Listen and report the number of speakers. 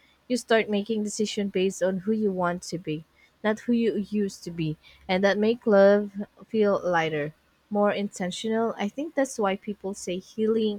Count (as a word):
one